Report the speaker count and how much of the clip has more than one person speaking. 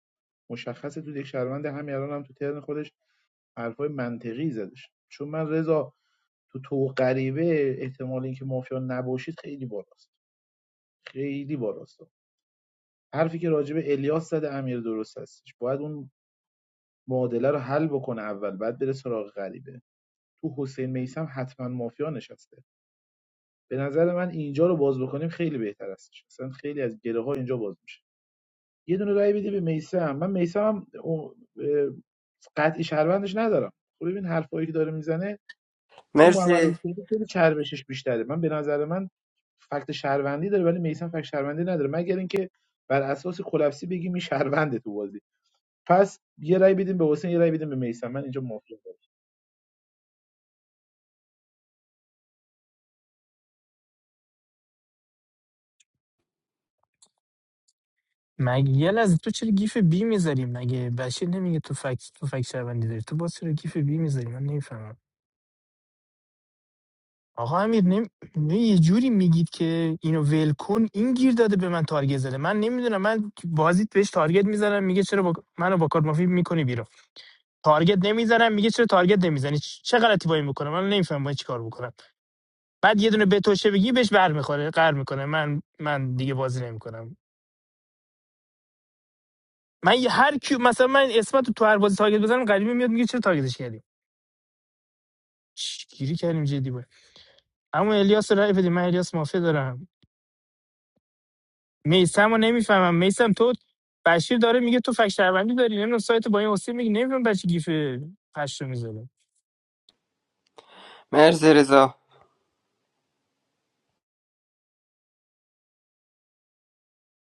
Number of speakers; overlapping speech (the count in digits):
3, under 1%